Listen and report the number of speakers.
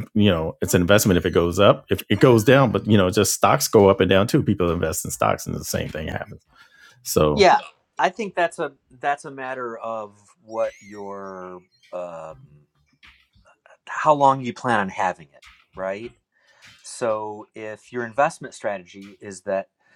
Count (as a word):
two